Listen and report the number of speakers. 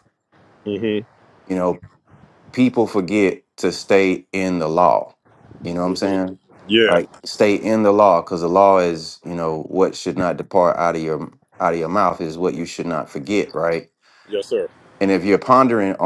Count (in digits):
2